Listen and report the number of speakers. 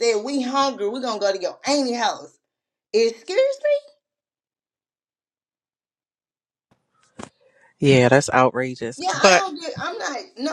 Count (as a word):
two